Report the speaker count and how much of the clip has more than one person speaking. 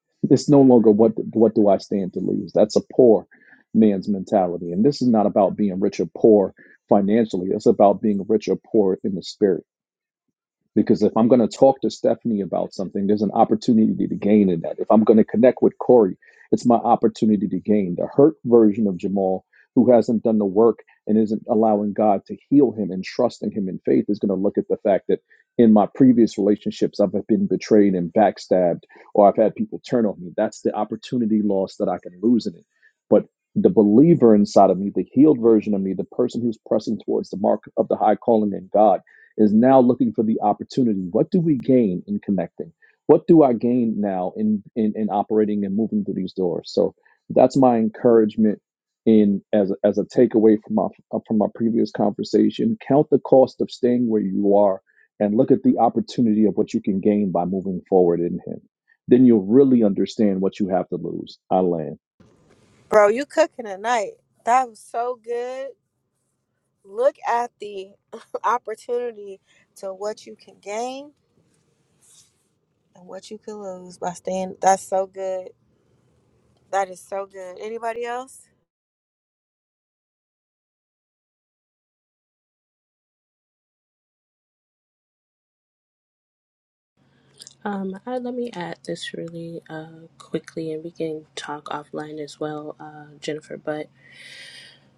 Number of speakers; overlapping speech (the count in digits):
3, no overlap